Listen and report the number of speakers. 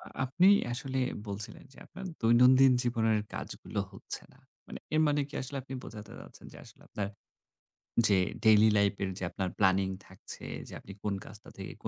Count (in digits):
1